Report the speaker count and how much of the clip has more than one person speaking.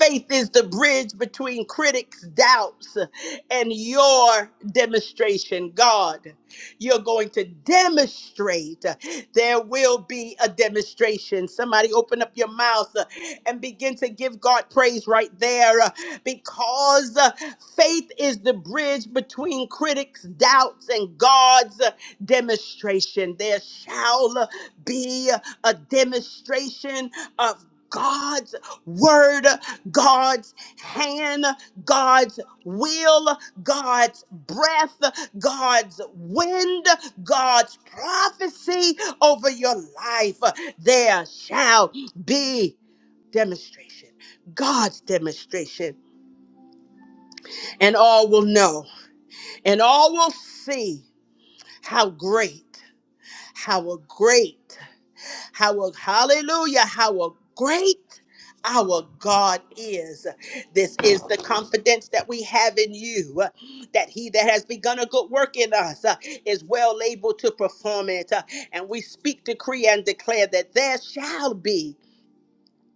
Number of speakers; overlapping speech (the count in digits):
1, no overlap